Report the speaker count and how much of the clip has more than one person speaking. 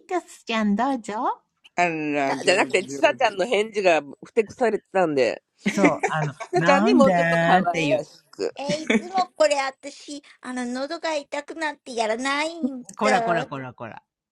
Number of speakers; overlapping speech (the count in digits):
4, about 21%